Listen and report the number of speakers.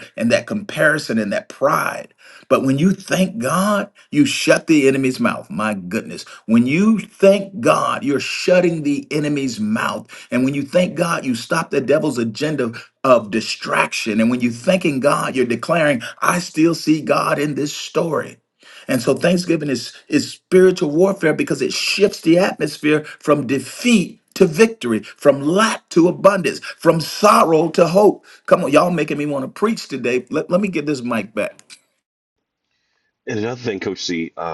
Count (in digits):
2